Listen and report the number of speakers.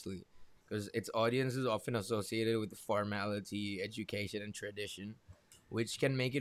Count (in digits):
1